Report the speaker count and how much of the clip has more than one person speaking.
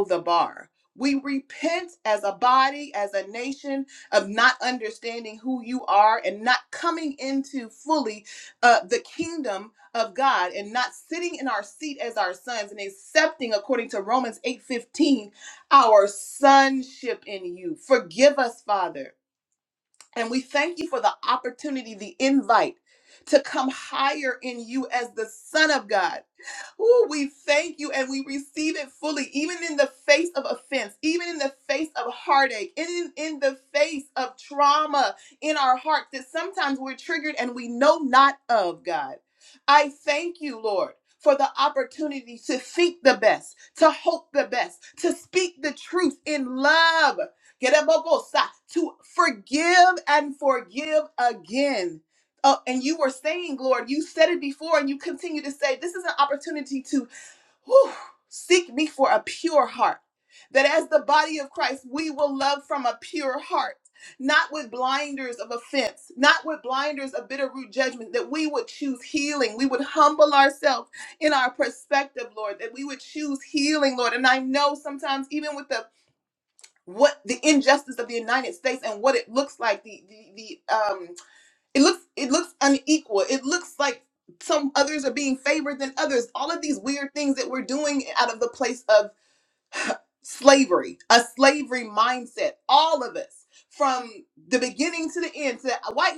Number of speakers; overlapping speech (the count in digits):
1, no overlap